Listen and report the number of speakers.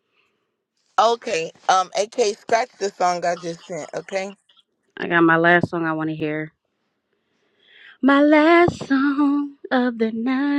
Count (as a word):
two